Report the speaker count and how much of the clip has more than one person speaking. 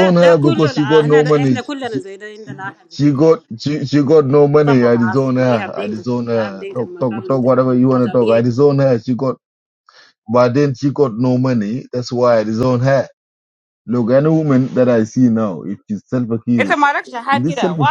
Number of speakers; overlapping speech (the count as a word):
three, about 32%